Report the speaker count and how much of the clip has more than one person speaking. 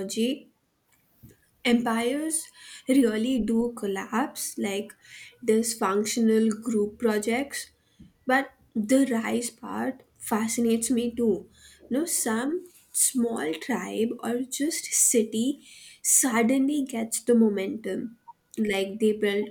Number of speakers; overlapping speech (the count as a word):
one, no overlap